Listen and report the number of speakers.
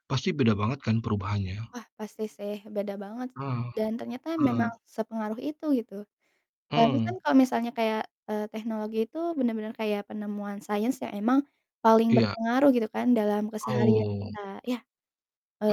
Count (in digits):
2